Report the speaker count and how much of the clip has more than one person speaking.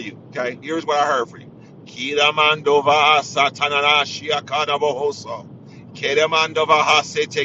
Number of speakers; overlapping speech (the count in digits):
1, no overlap